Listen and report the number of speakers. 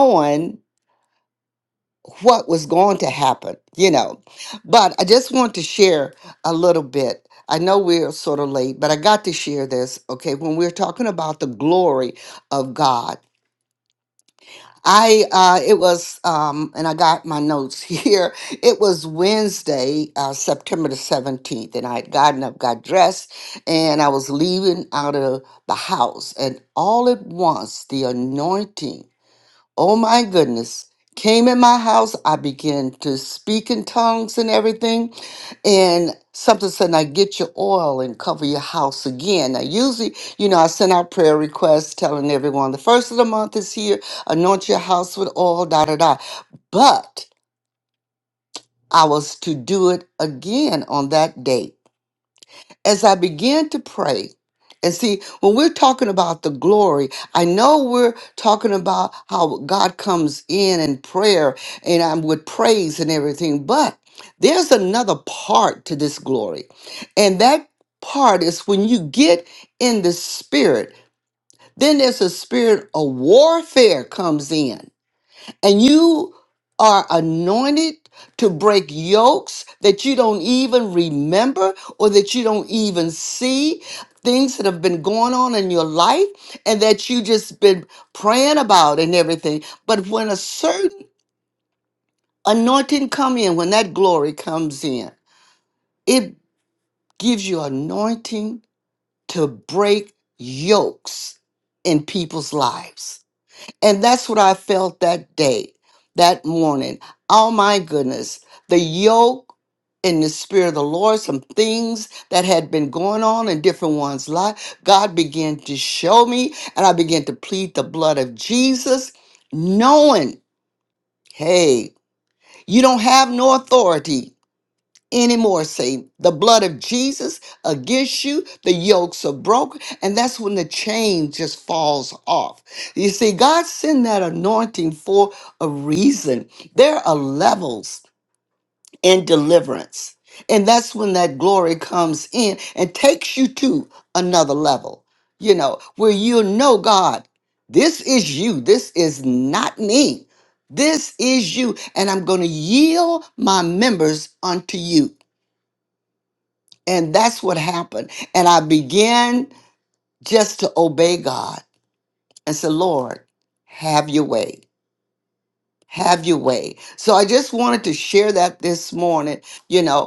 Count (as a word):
one